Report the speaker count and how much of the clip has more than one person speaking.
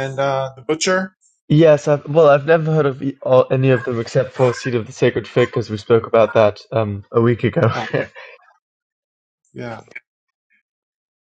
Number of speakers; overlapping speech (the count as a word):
two, under 1%